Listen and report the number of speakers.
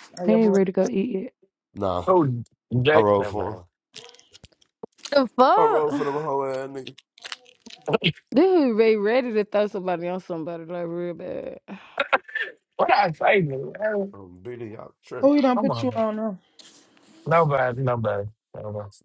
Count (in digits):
4